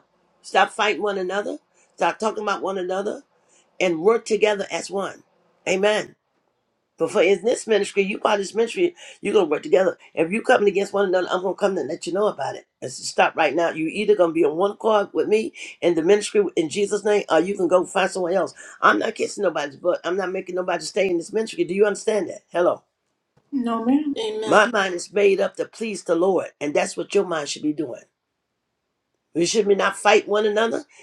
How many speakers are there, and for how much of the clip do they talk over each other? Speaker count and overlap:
2, about 1%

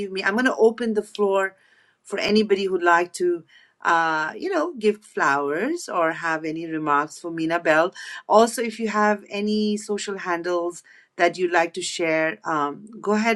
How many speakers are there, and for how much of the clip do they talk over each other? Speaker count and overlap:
1, no overlap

